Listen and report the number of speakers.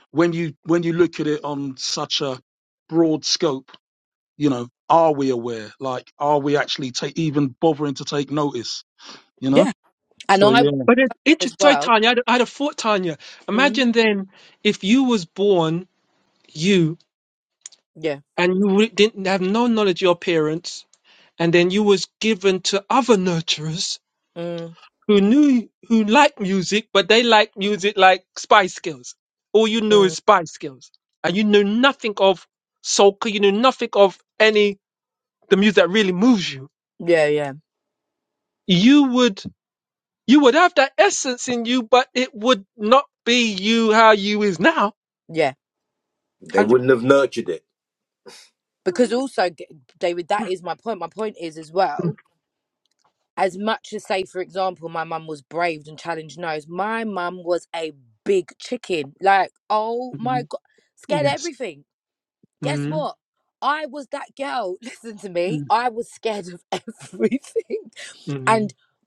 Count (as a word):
four